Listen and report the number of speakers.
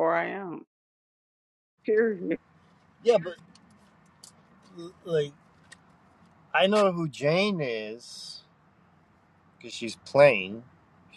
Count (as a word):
two